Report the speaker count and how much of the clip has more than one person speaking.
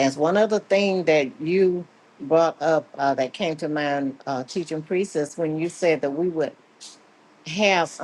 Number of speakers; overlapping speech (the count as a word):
one, no overlap